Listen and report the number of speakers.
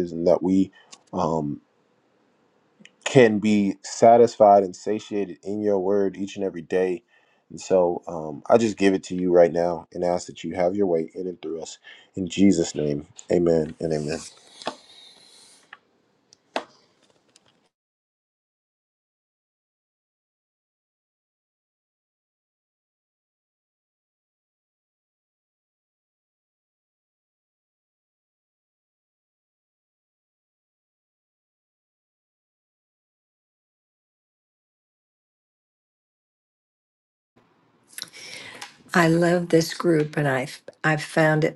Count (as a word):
two